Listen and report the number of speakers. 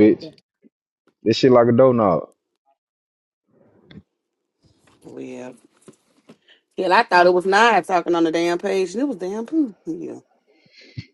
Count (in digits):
2